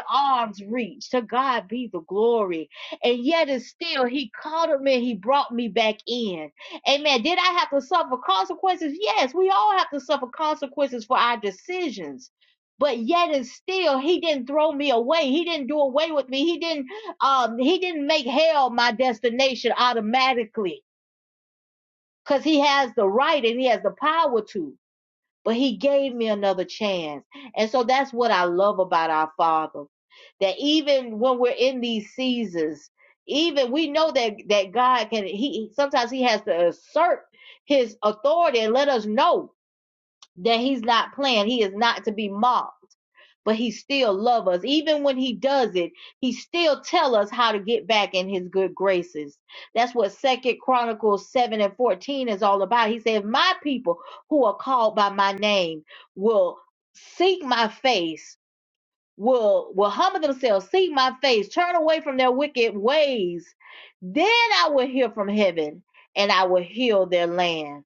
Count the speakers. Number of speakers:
one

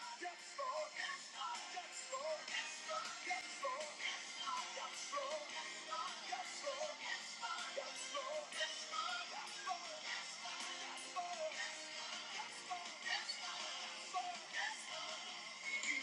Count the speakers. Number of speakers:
zero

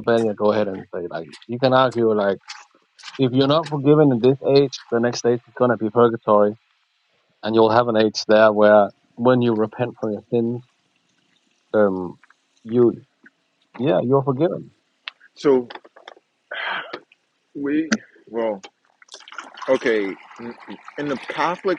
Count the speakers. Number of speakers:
two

